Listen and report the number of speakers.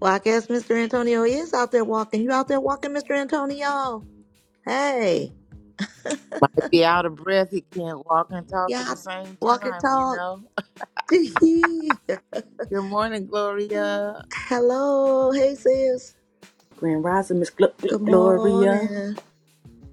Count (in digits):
3